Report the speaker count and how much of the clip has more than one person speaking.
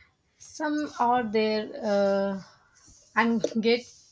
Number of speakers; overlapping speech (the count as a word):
one, no overlap